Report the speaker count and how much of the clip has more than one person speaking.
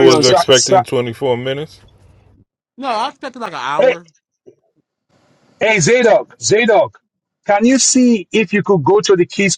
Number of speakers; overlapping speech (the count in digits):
3, about 11%